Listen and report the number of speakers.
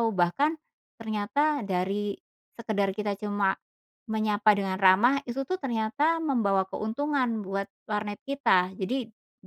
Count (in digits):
1